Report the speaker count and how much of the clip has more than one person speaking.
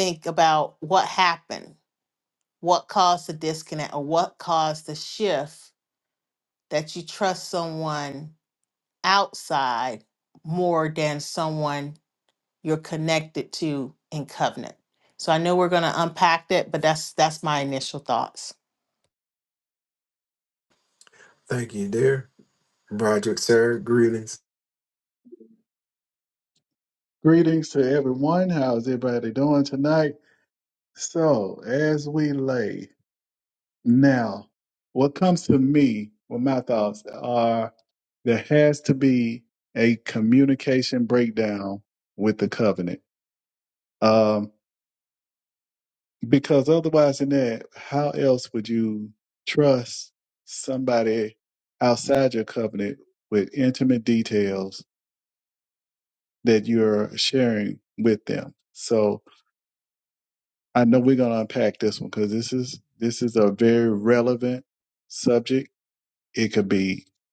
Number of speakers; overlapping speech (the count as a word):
three, no overlap